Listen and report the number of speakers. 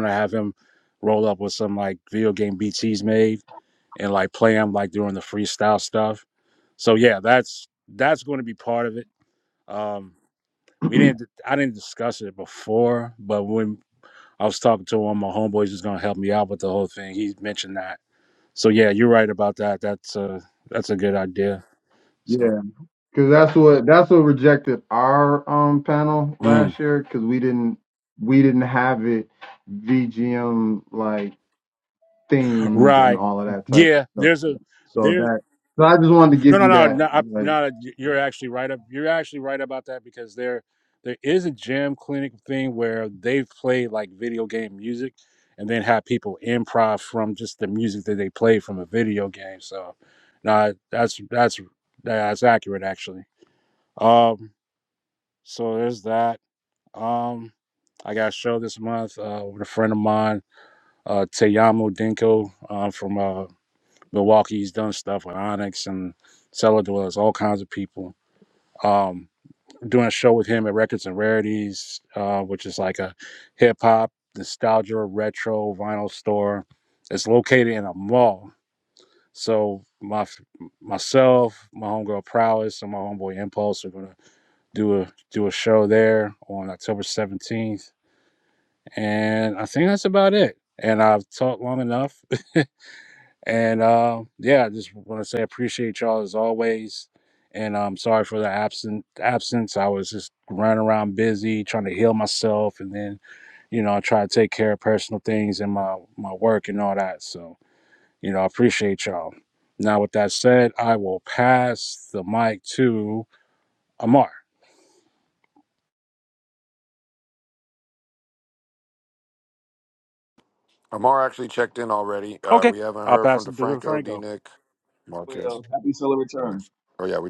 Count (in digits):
4